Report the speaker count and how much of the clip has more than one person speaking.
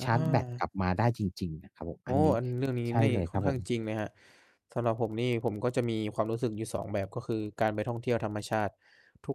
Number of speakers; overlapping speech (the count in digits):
2, about 16%